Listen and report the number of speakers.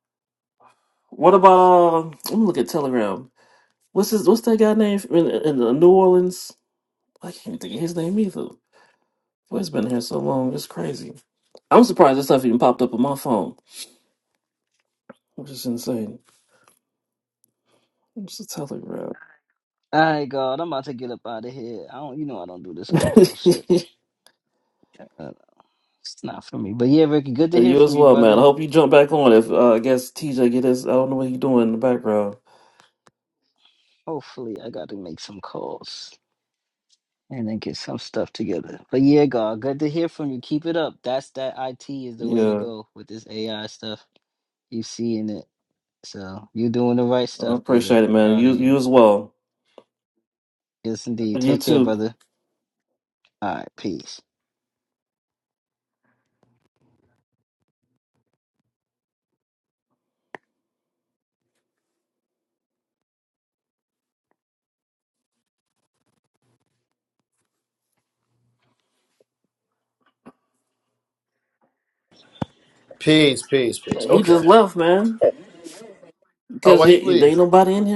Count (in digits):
3